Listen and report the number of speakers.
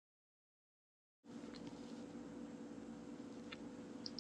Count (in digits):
0